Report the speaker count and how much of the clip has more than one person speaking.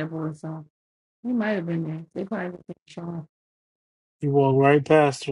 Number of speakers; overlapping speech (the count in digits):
2, no overlap